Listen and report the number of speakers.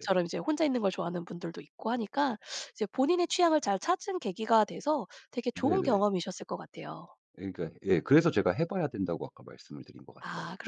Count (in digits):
2